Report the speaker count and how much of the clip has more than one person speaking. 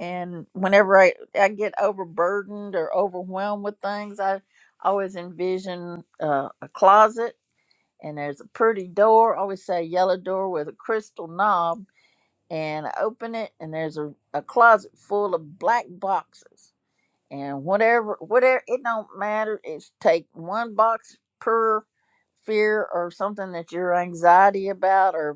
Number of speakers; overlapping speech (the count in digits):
1, no overlap